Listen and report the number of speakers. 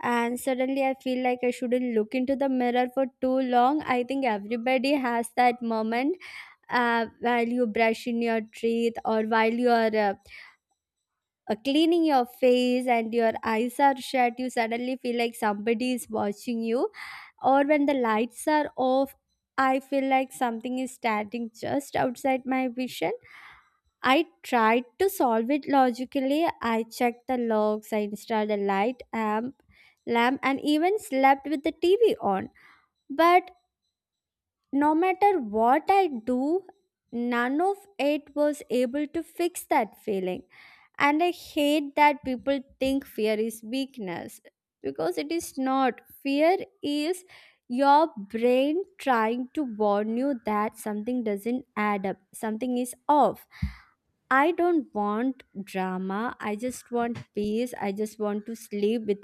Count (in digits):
1